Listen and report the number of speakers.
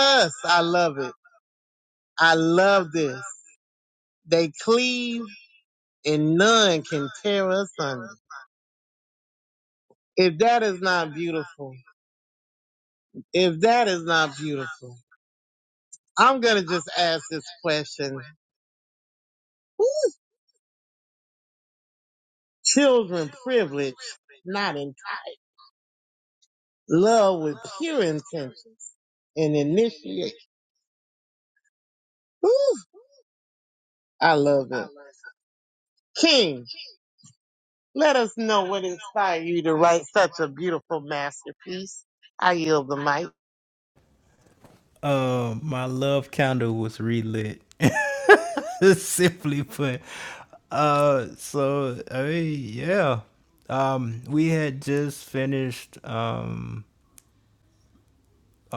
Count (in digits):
2